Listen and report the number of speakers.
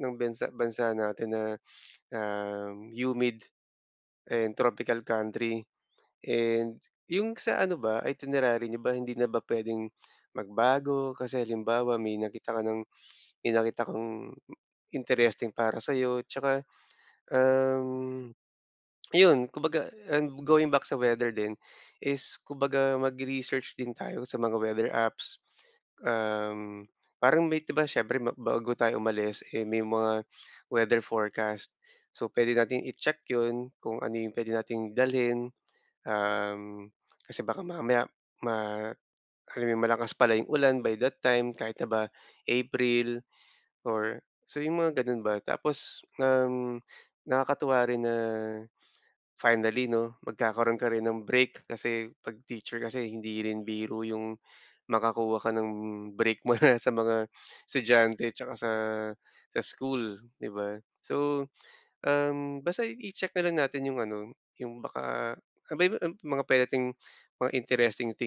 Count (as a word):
one